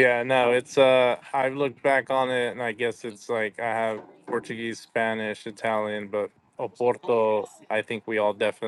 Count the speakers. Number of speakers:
1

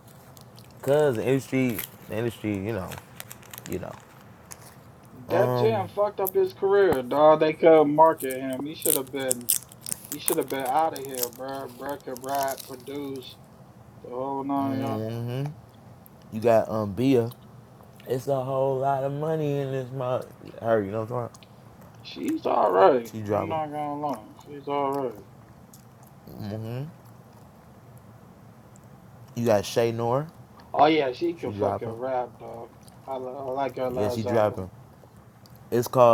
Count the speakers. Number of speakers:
2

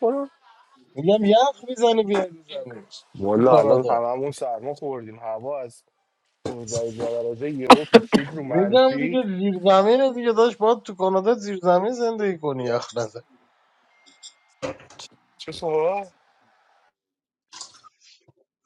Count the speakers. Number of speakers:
2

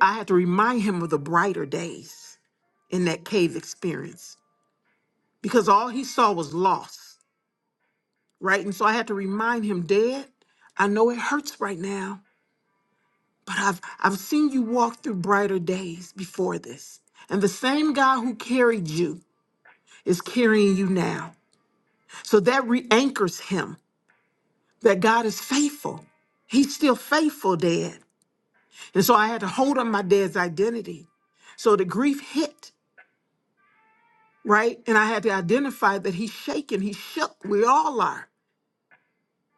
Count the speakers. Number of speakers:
1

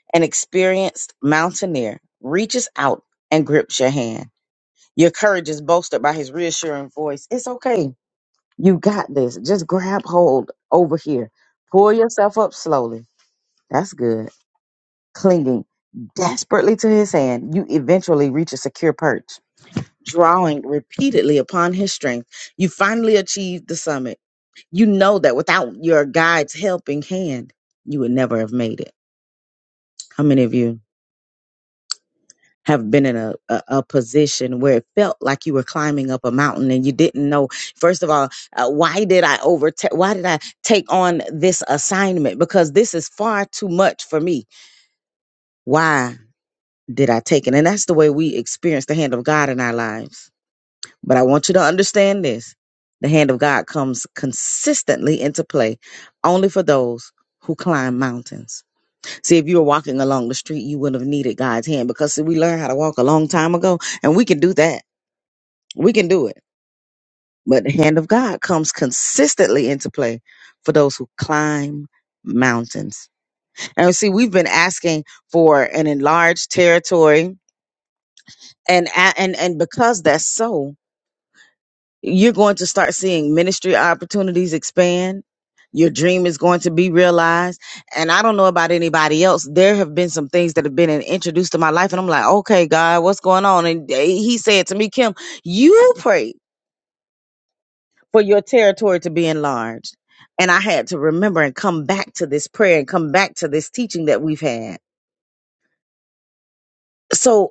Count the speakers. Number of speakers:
1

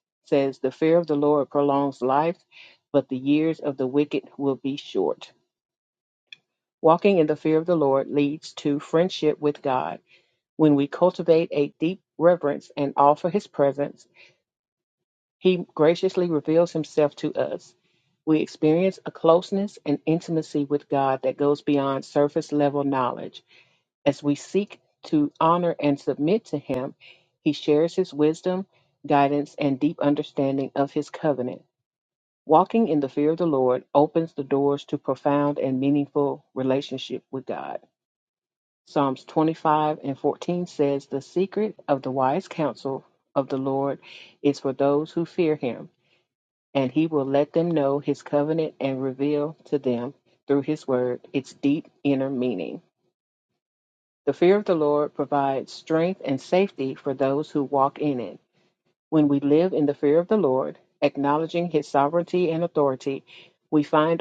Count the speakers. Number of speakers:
1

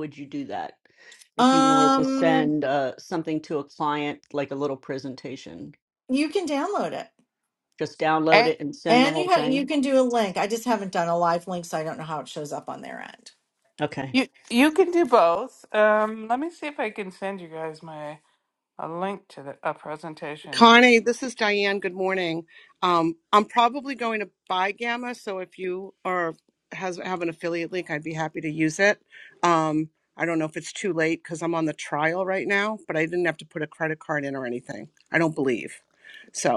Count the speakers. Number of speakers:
4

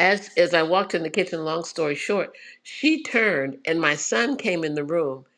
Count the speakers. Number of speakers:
1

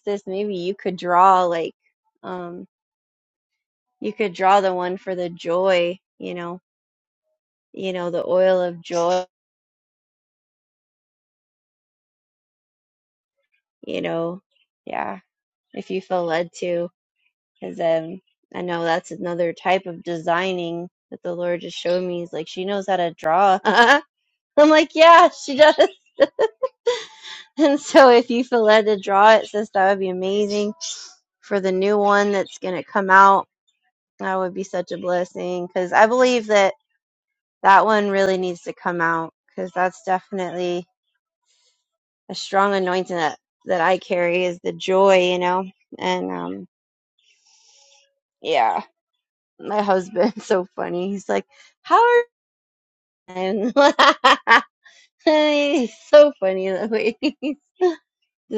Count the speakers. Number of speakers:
1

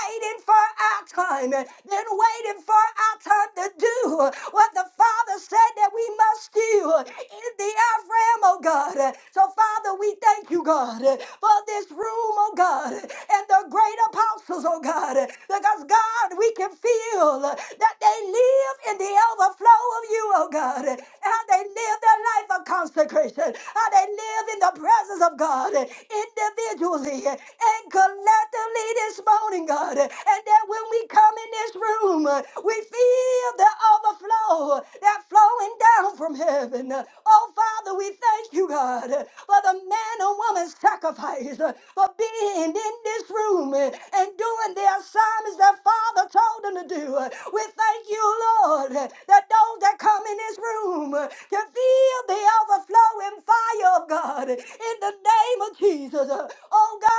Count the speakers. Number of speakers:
1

